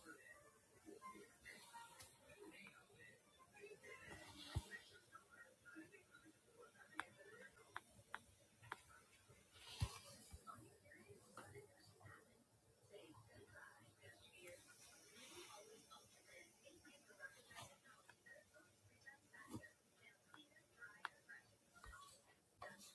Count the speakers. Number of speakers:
0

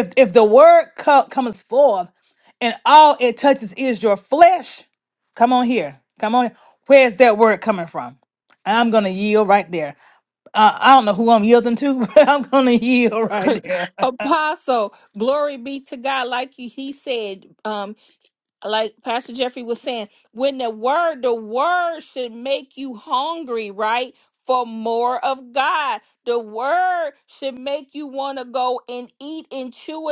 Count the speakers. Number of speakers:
2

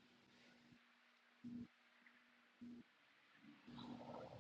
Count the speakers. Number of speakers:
0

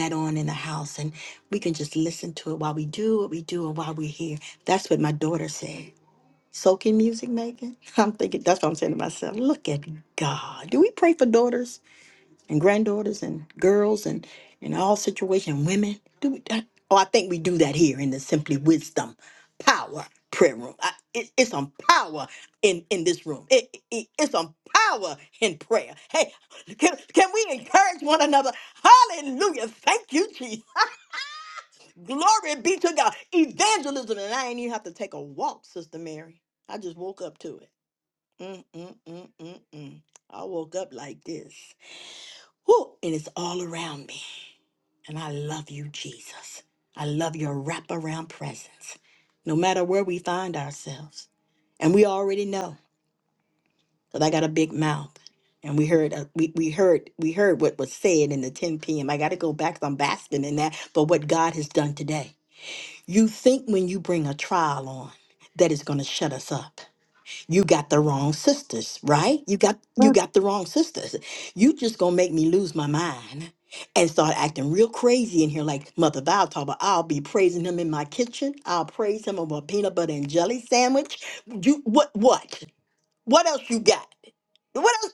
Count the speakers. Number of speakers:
1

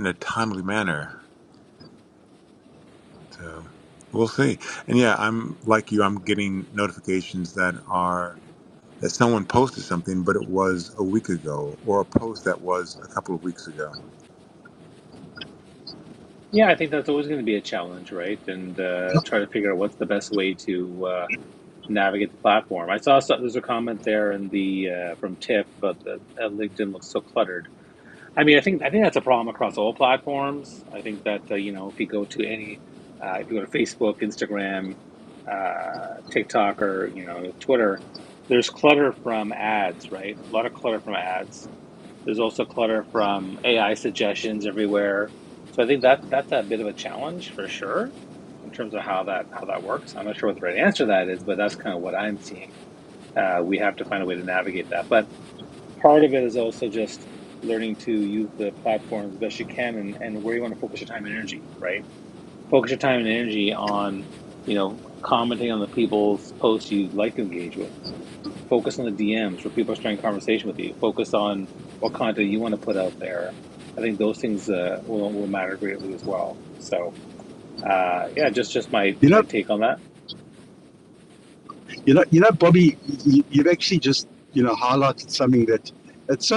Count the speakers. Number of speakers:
3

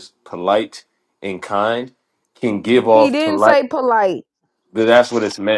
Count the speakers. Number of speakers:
2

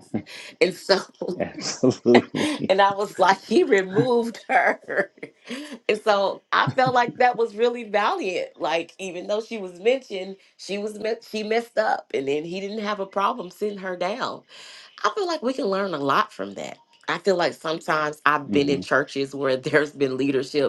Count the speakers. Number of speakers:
2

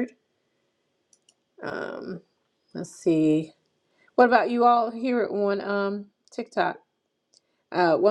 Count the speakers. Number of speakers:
1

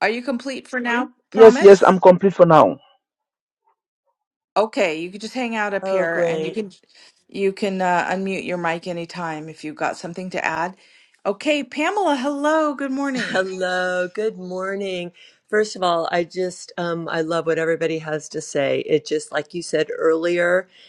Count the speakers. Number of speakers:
3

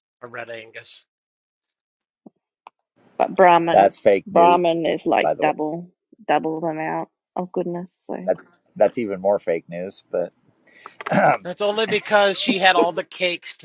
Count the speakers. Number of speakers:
3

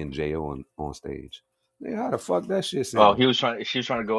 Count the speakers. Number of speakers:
2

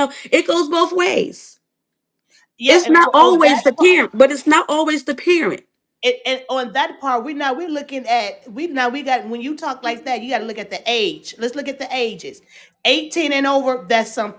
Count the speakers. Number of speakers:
2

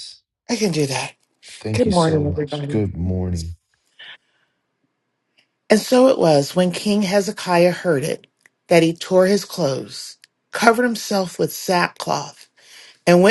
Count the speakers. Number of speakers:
2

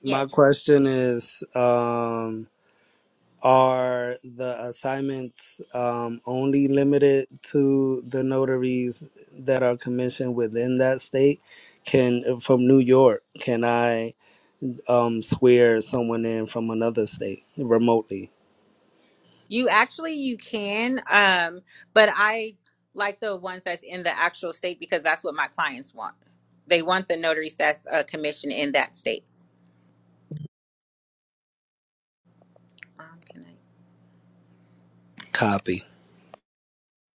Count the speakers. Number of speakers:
2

